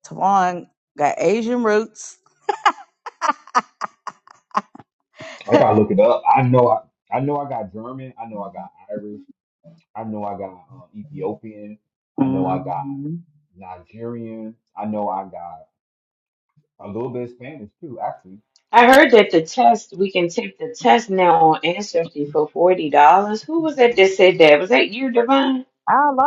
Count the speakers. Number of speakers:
3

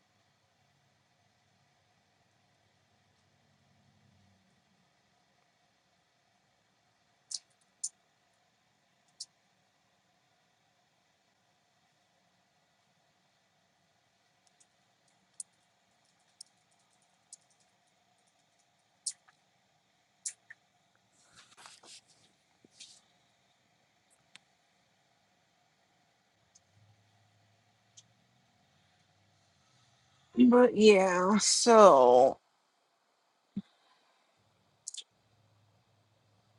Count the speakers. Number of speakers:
1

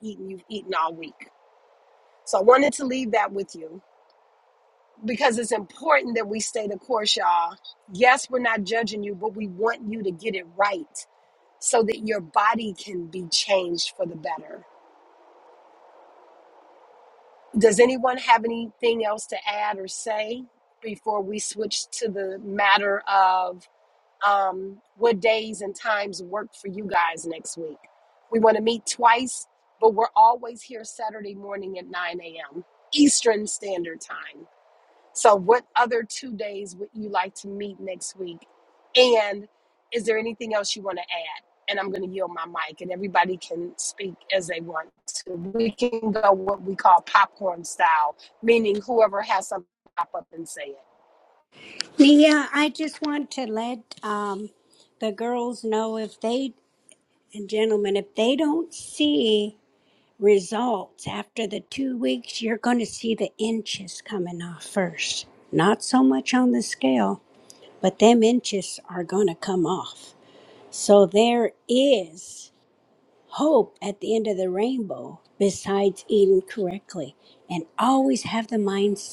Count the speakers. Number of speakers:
2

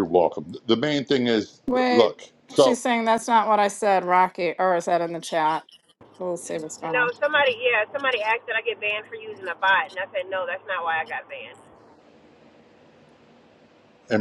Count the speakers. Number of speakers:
3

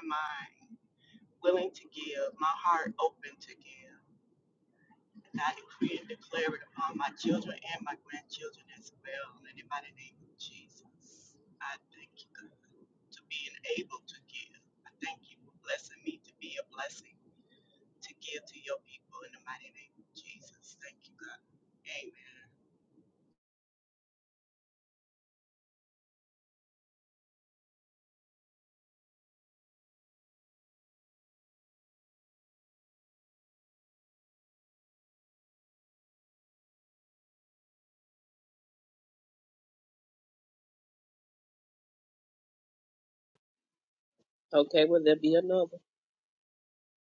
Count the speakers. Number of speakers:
2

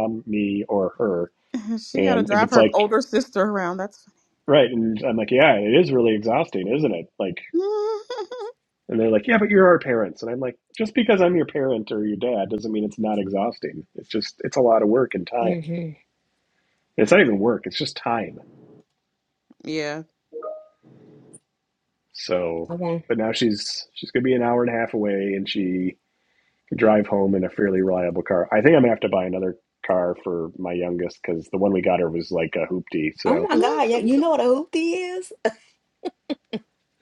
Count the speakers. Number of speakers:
3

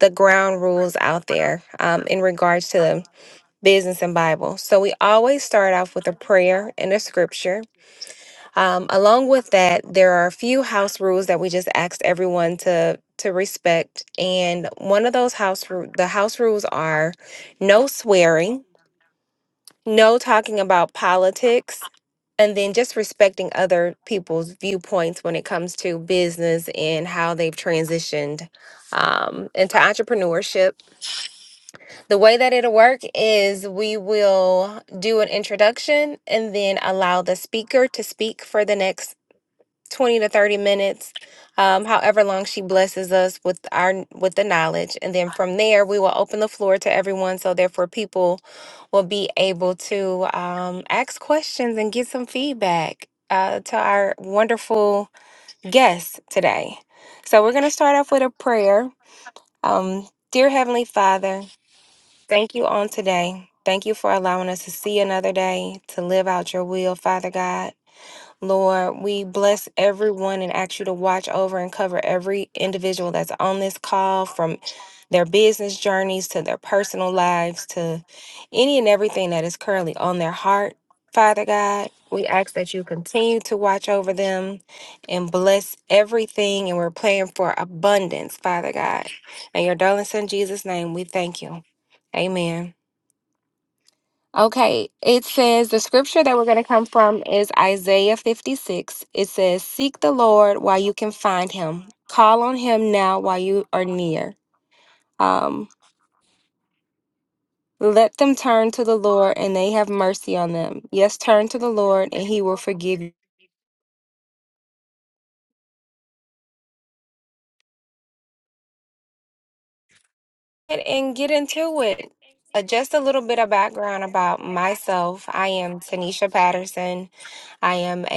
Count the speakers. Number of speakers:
1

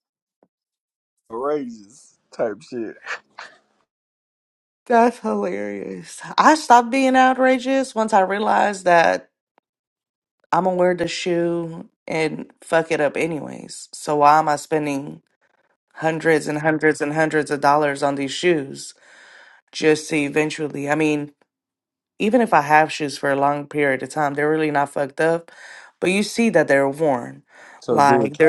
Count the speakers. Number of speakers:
2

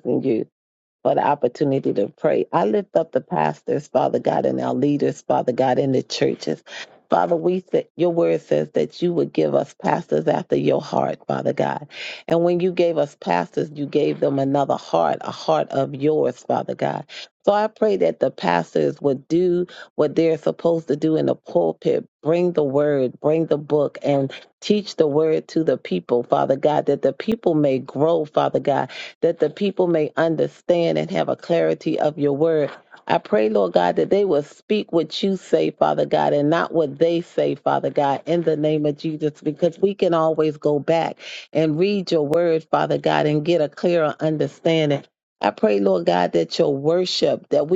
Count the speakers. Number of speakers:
1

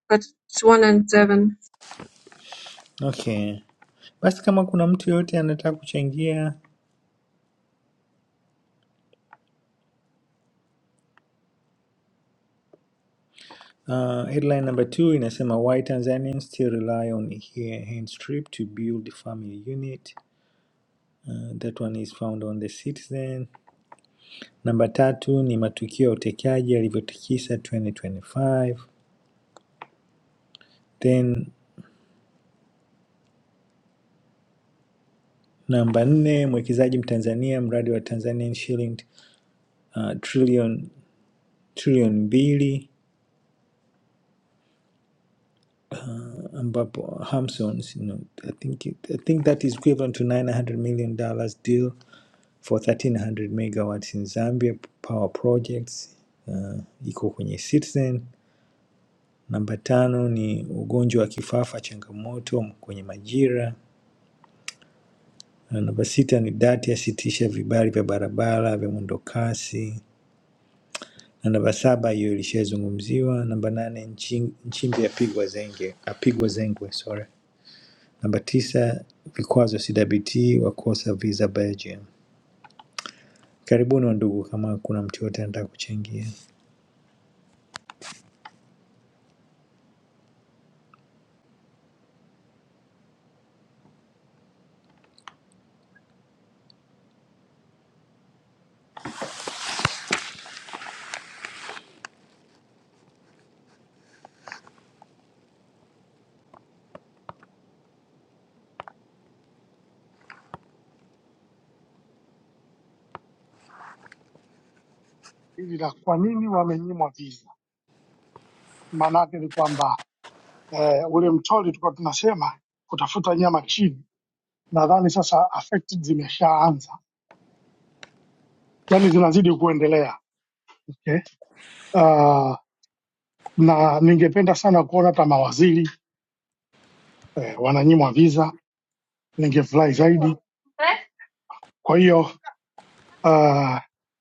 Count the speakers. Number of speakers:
3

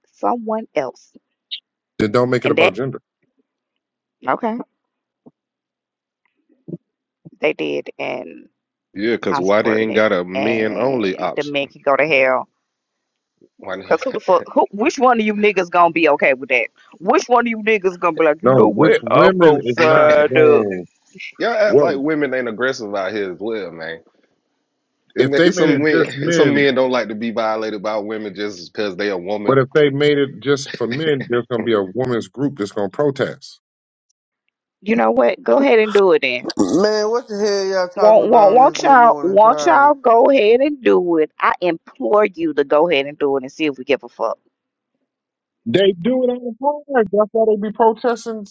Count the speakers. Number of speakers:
4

